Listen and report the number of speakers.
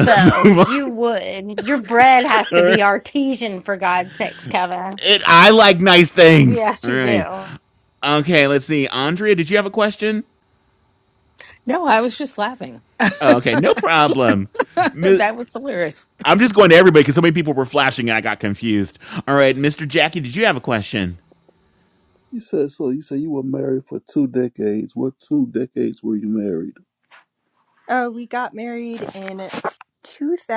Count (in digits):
5